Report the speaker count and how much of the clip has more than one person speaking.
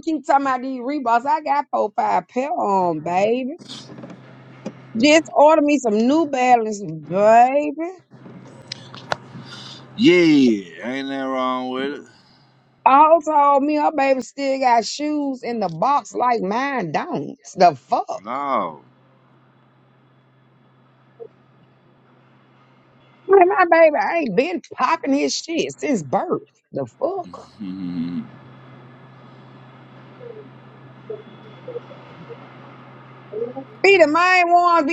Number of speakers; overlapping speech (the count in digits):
2, no overlap